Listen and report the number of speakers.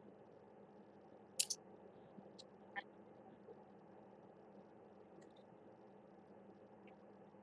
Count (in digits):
0